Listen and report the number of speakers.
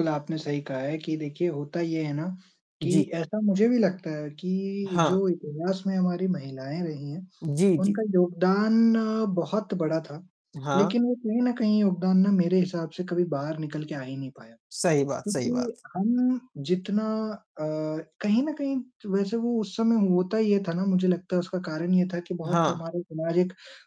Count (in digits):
2